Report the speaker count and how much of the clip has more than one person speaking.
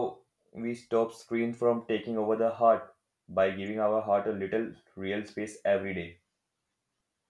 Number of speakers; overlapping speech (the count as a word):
one, no overlap